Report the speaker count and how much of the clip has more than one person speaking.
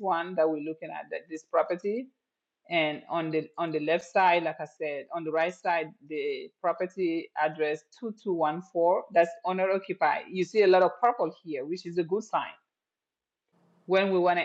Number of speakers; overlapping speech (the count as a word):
one, no overlap